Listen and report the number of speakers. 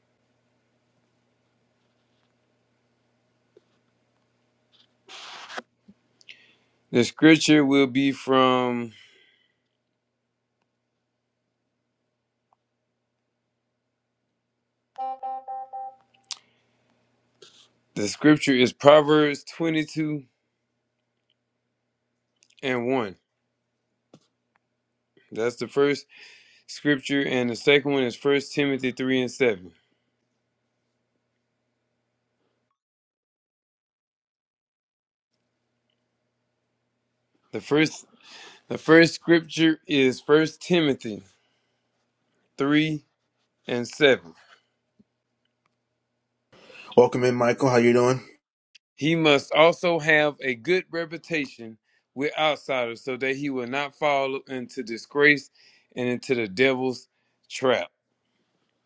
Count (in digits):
2